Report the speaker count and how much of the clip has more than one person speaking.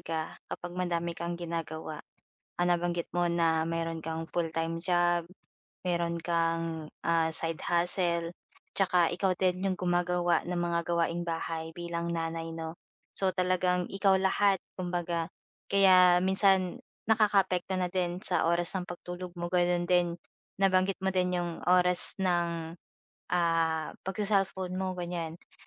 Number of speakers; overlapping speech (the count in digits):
1, no overlap